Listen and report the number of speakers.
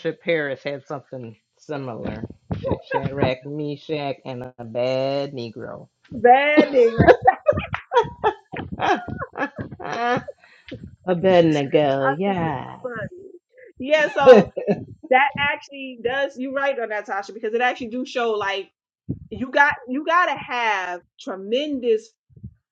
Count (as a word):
two